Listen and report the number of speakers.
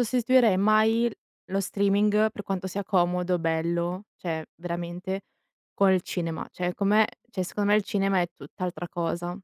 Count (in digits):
1